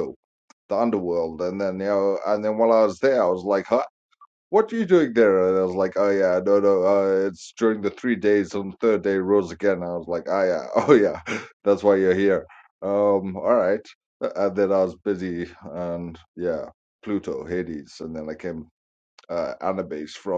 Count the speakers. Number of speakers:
1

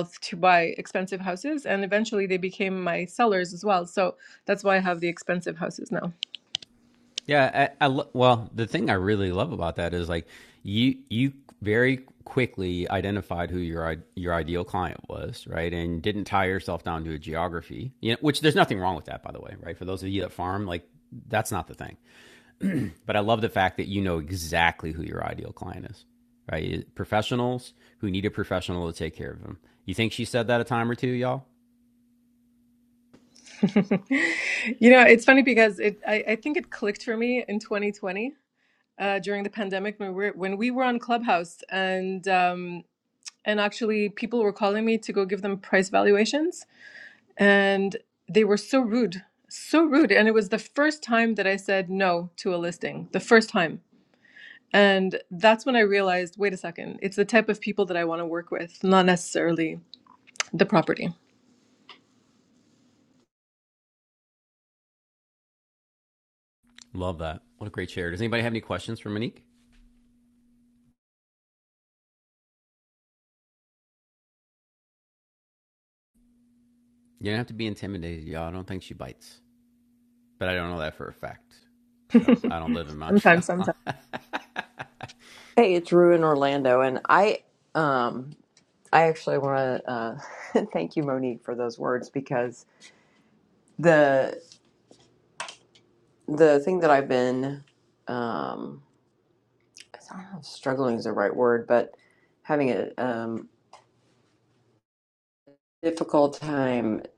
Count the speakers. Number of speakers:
3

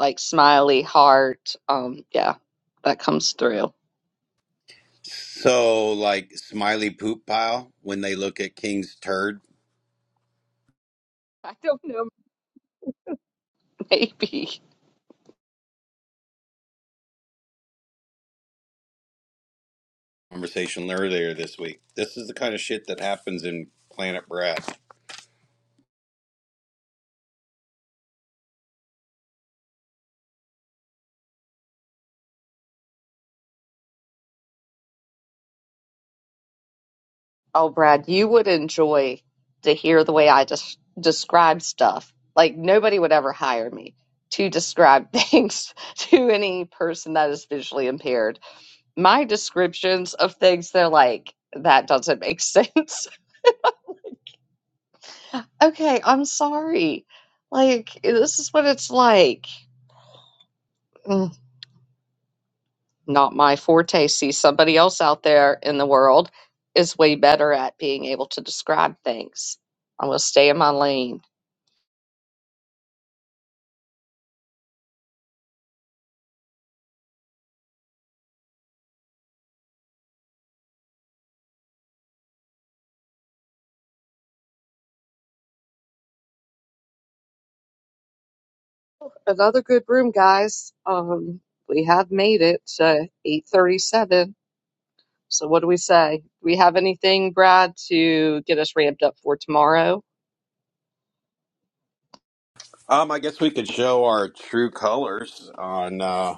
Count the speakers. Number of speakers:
2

